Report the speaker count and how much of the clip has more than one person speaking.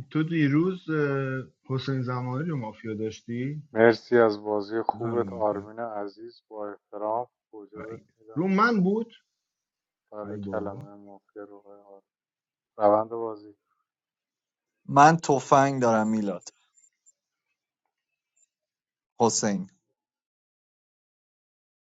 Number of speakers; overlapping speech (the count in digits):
3, about 7%